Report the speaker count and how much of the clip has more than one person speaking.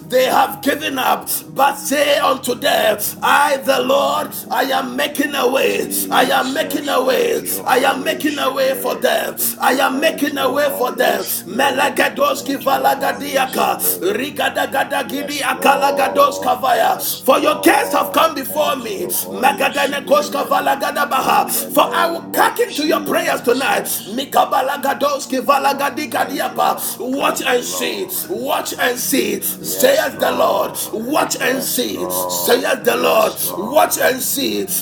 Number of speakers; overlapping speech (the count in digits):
2, about 55%